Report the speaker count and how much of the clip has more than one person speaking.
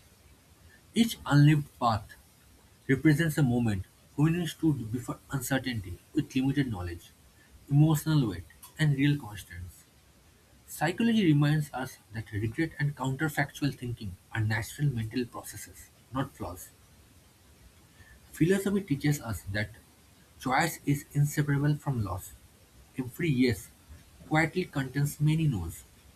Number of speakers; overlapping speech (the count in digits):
1, no overlap